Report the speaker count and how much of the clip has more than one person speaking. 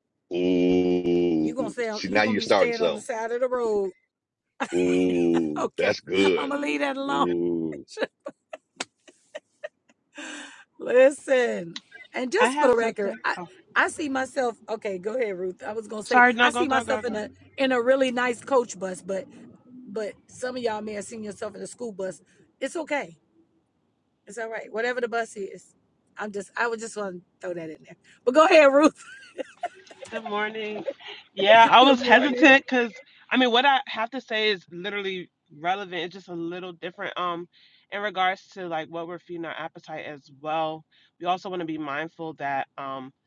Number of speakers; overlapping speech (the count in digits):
3, about 11%